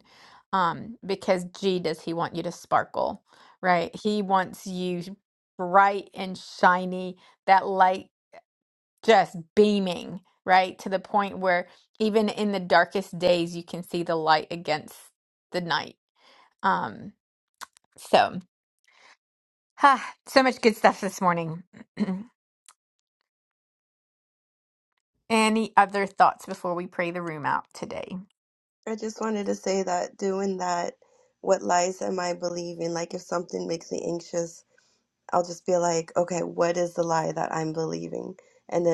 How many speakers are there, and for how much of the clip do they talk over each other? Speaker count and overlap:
2, no overlap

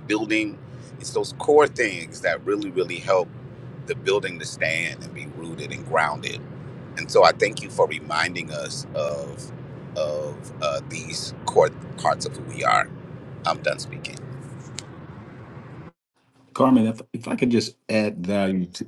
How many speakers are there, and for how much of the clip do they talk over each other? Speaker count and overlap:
2, no overlap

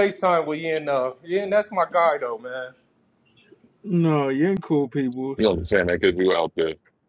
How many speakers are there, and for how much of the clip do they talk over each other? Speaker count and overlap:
3, no overlap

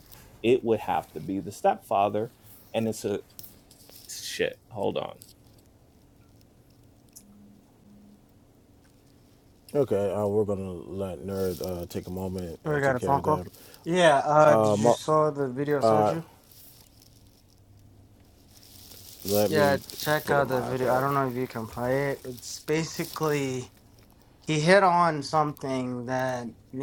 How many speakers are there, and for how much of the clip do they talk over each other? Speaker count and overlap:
3, about 9%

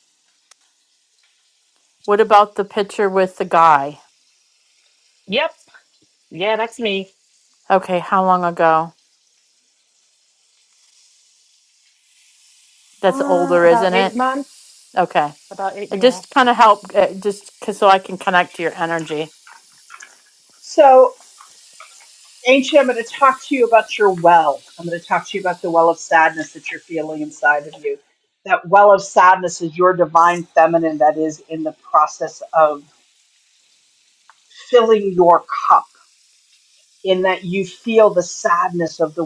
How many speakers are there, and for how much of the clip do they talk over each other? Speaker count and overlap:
3, about 3%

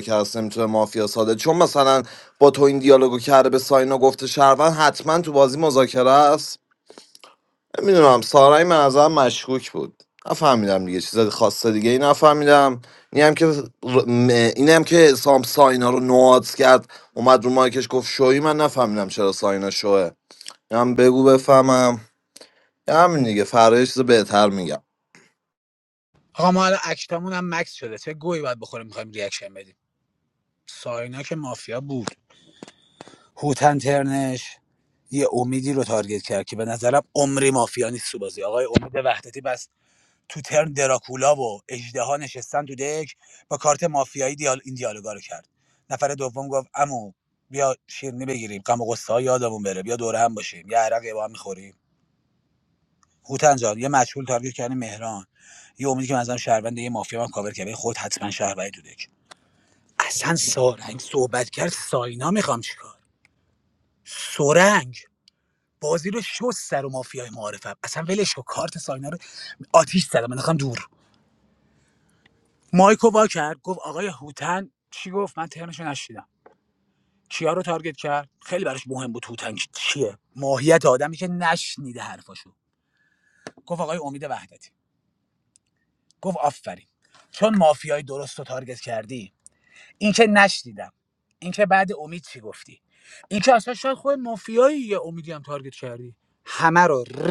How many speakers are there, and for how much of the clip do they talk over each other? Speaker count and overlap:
2, no overlap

